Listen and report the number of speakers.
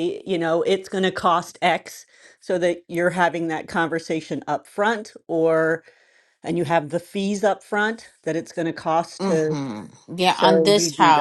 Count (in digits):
2